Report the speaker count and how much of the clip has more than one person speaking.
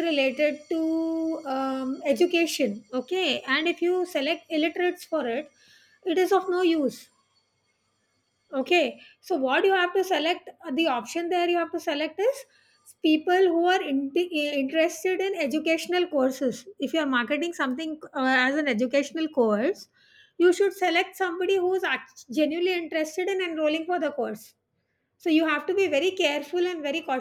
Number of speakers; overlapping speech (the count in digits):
1, no overlap